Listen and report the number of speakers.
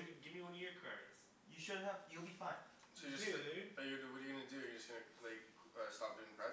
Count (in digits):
3